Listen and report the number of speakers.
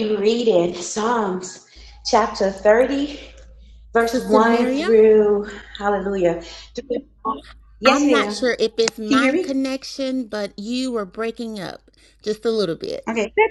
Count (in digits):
2